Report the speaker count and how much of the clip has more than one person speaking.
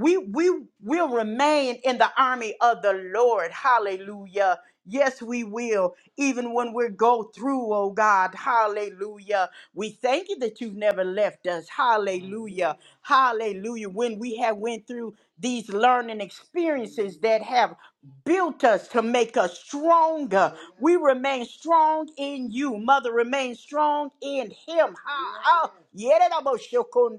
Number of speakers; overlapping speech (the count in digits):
1, no overlap